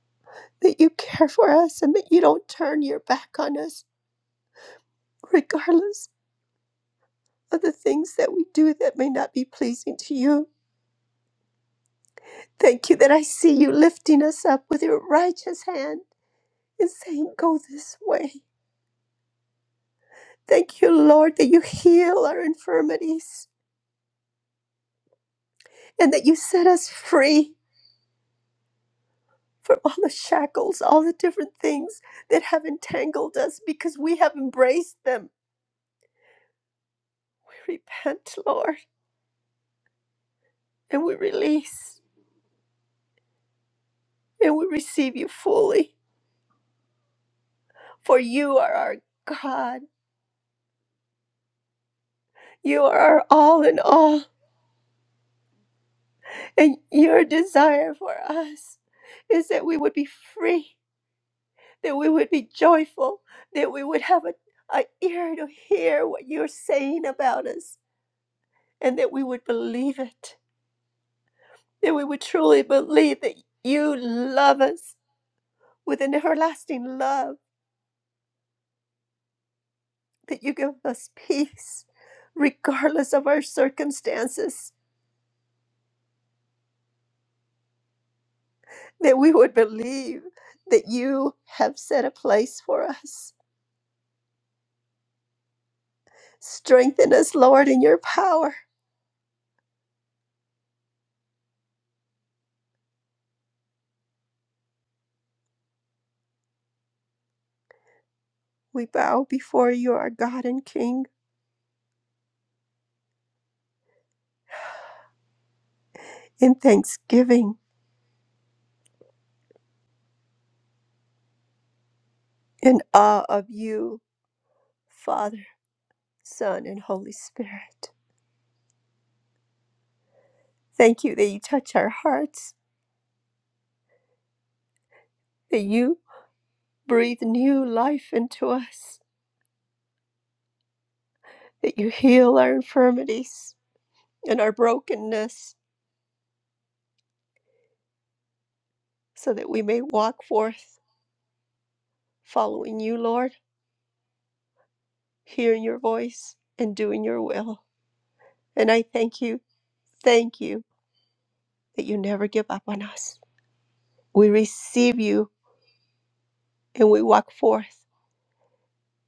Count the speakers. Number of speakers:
one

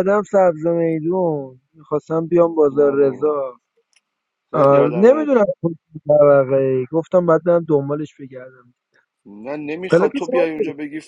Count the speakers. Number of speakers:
two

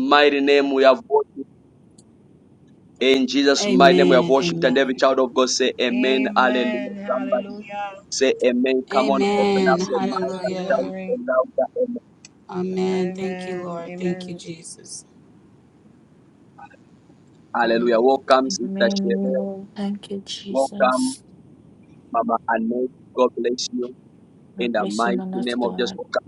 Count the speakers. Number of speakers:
four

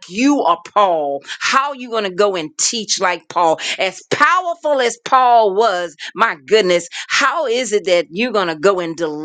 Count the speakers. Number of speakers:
one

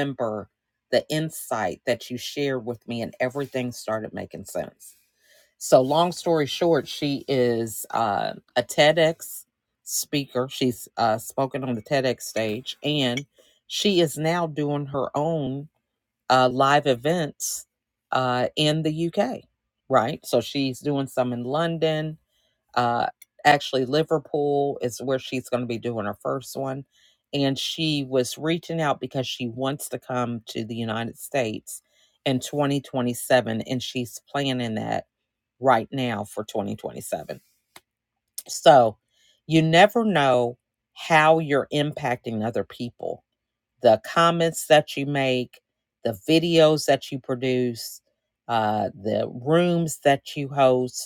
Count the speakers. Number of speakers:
one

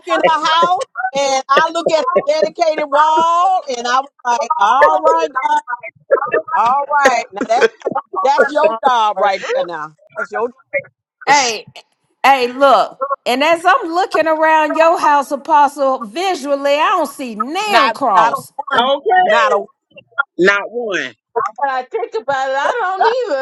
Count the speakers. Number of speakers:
four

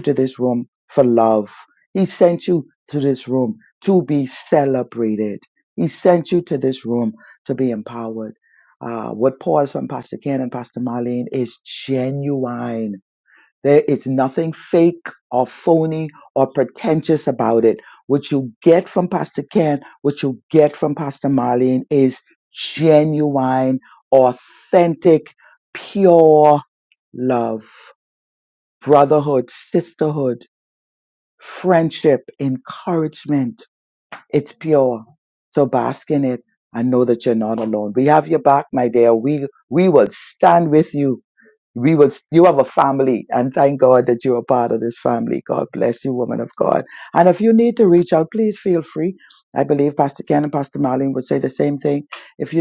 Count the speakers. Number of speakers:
one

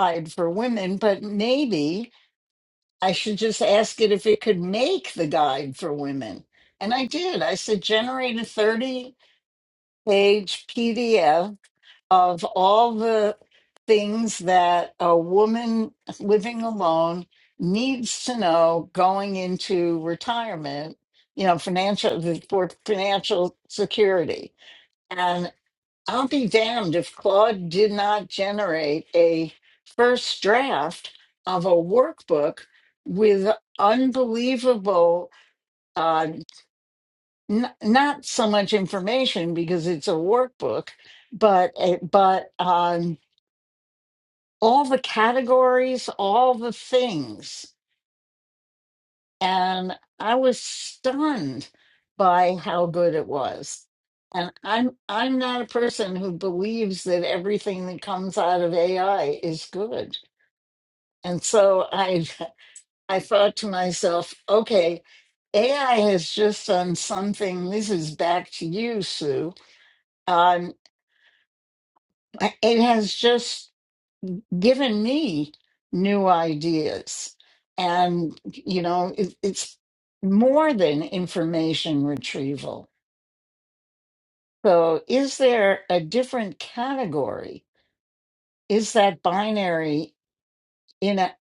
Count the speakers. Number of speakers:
one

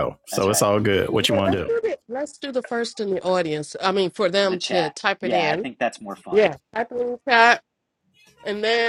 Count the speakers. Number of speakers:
three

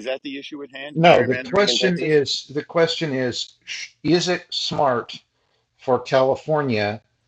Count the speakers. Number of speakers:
two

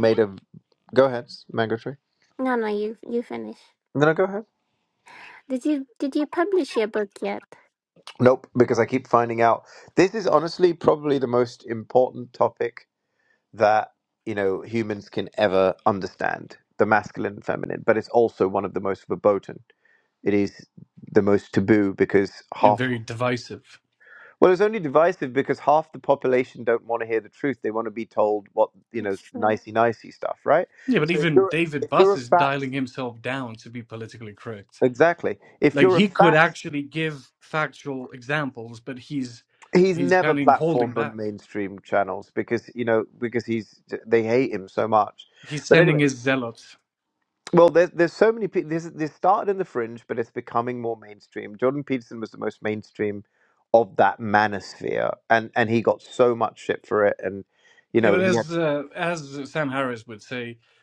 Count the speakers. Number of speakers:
three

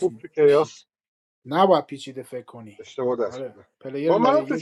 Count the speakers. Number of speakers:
two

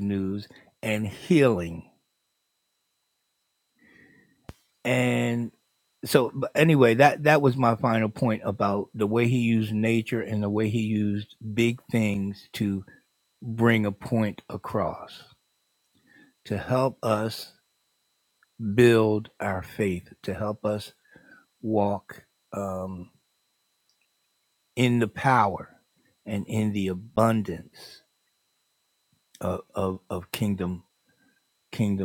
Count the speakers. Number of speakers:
one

